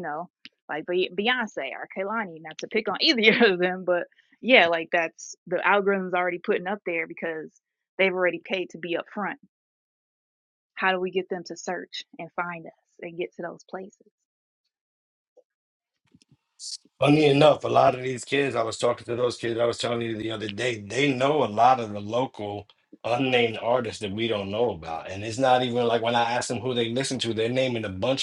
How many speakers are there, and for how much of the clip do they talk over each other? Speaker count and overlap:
2, no overlap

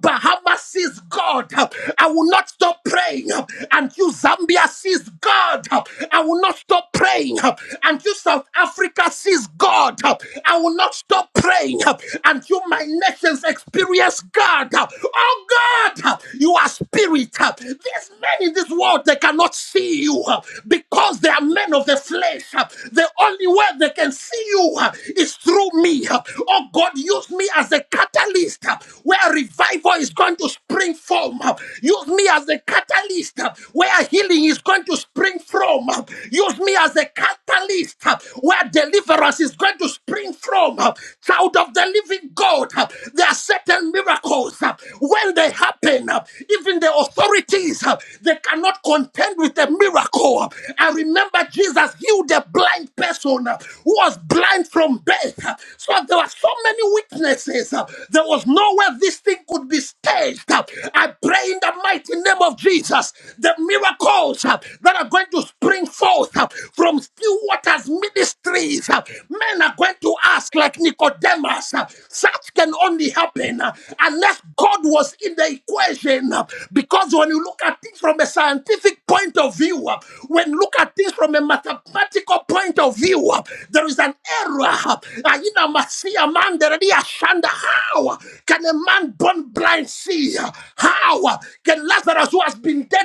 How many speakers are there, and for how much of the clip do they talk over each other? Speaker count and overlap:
1, no overlap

